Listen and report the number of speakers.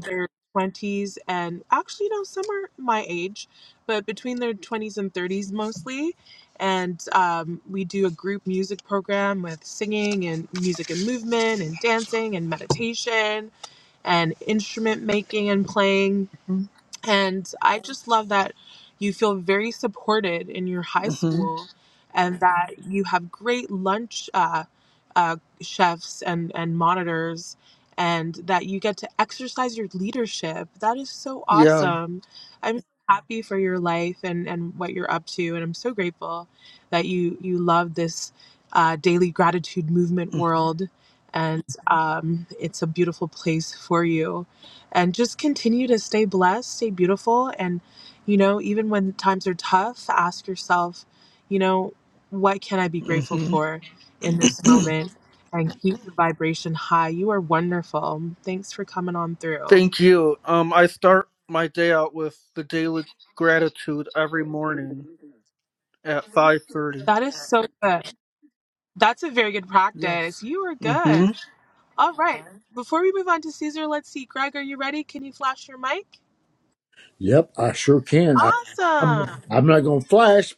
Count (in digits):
3